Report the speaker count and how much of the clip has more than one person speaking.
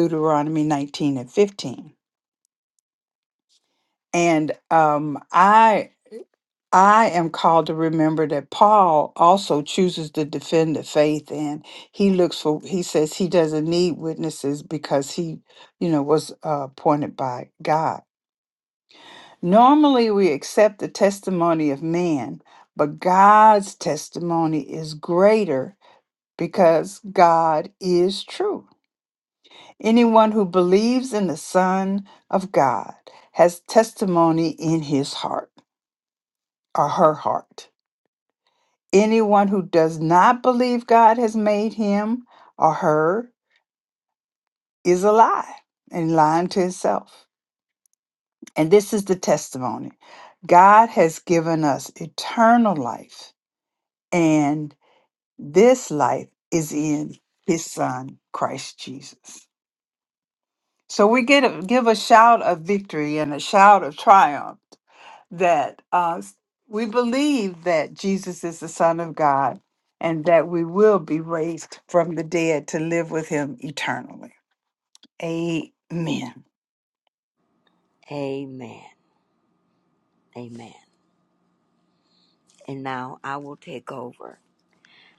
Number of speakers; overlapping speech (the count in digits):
2, no overlap